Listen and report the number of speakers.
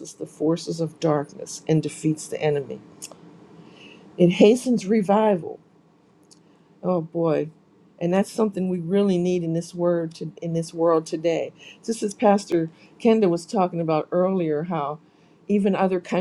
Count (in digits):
1